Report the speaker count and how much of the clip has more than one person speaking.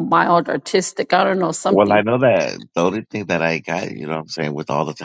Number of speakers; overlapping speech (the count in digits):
2, about 6%